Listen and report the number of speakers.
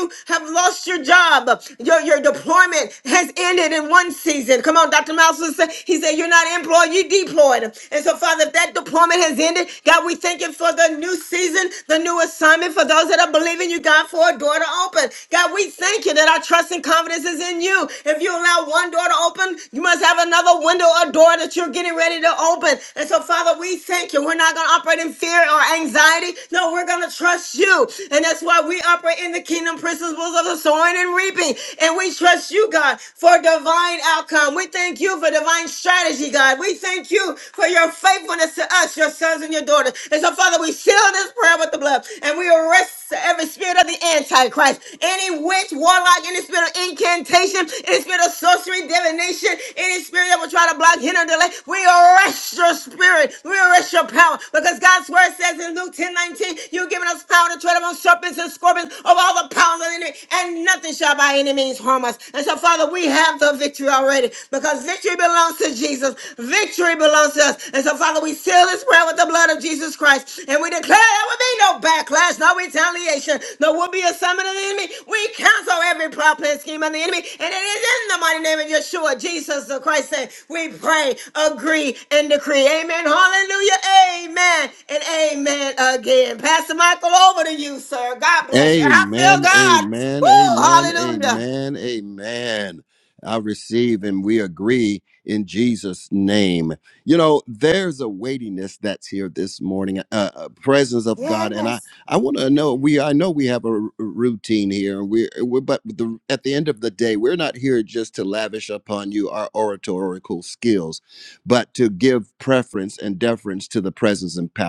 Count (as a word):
two